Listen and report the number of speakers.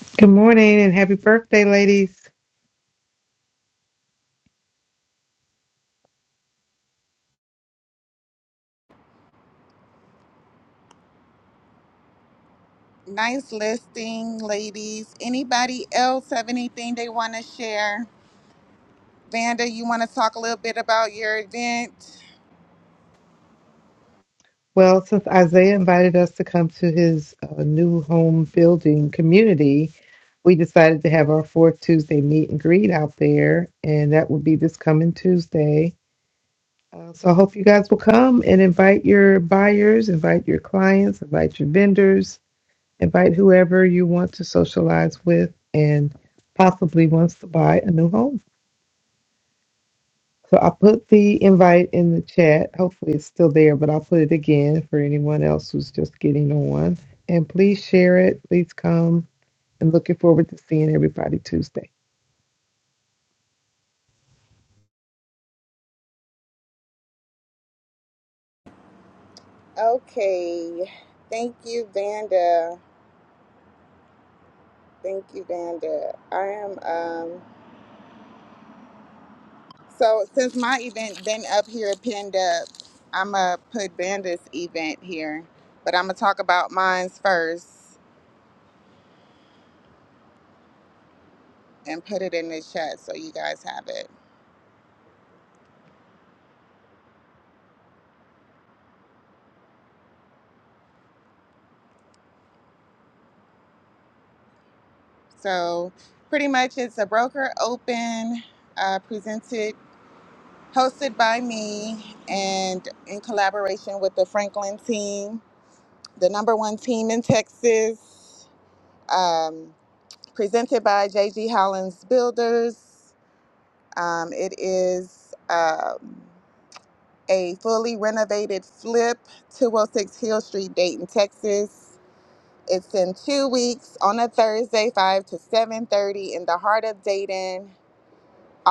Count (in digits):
2